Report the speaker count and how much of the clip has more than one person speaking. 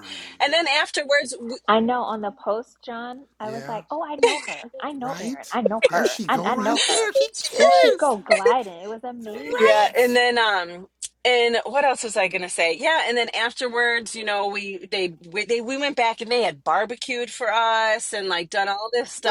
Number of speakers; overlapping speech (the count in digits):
3, about 15%